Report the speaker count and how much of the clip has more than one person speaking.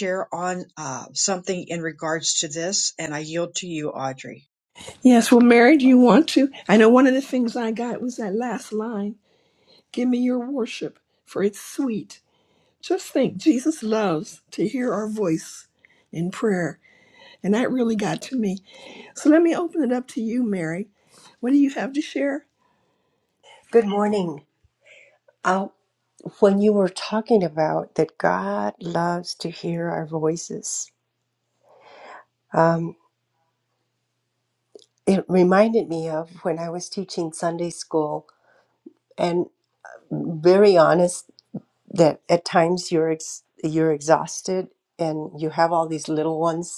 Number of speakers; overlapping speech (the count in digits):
3, no overlap